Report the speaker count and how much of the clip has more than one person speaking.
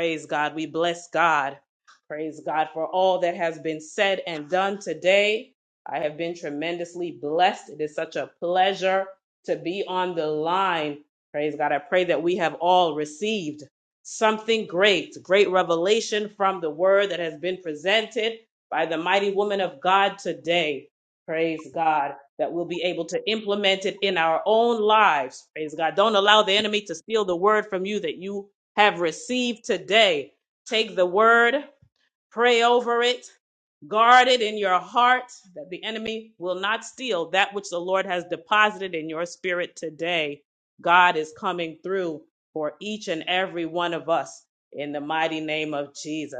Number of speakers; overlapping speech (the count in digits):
1, no overlap